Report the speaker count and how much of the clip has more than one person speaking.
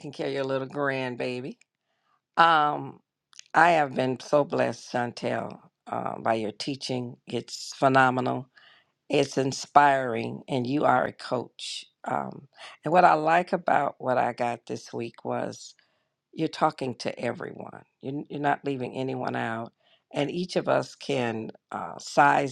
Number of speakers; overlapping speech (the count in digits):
1, no overlap